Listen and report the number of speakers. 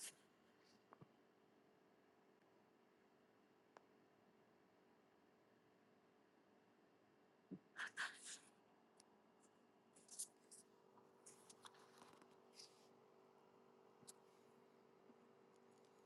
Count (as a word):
zero